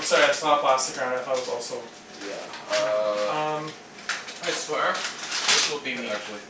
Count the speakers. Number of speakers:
3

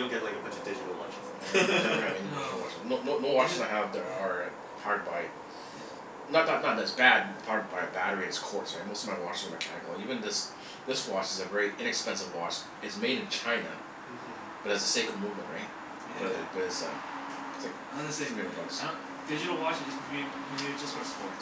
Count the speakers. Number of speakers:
3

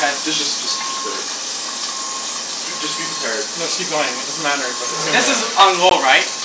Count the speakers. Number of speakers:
3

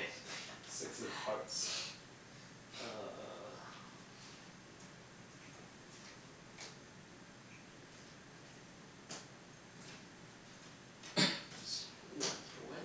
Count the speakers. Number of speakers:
1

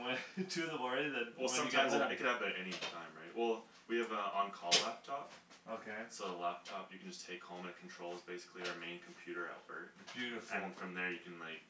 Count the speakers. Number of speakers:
2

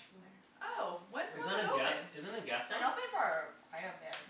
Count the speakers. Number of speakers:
3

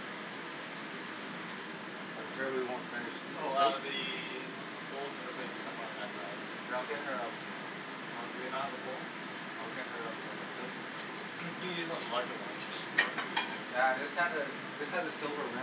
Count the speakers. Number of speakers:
2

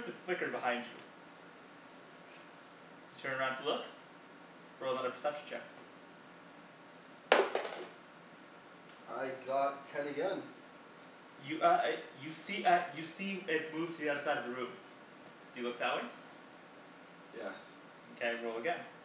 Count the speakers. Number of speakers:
2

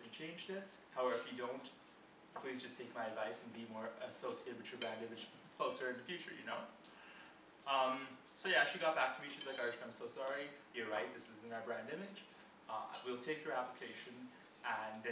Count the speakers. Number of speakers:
1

